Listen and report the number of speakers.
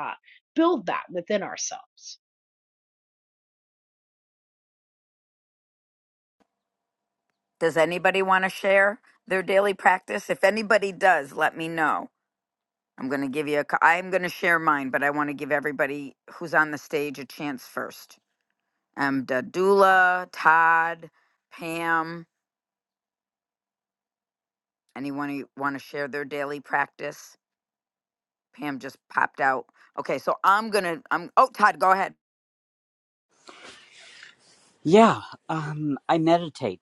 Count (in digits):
3